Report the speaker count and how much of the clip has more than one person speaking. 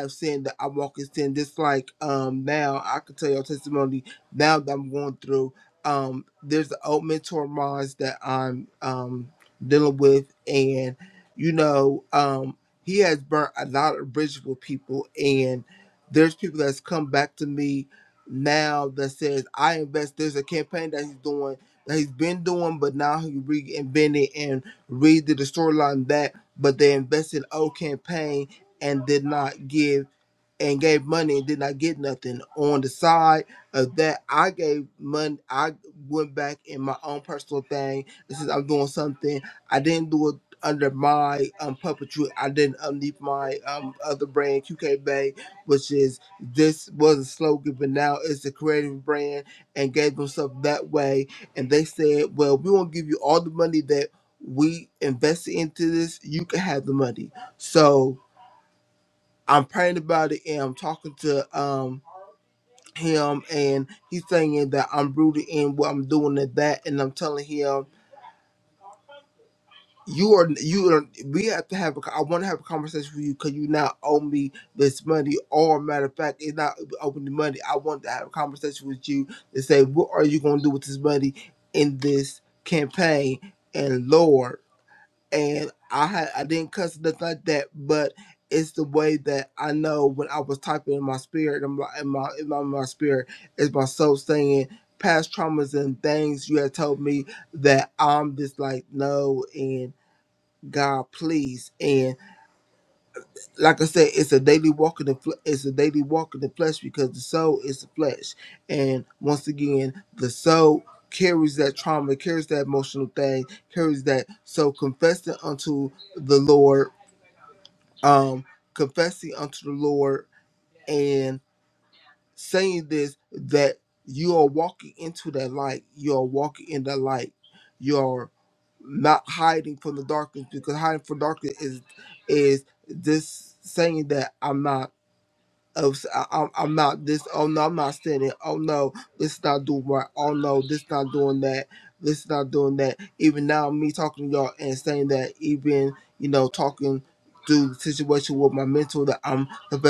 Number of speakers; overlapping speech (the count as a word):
one, no overlap